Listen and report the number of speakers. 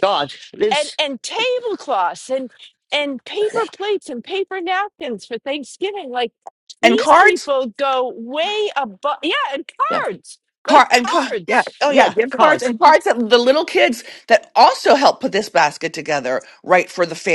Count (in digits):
3